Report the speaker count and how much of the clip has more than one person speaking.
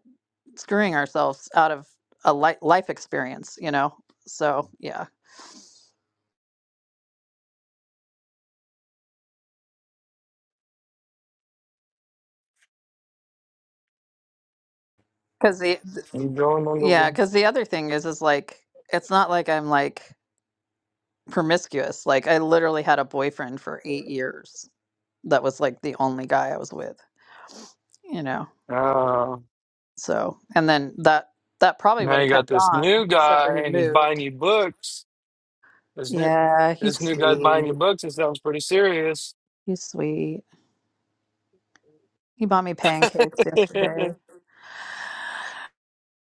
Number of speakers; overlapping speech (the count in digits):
2, about 7%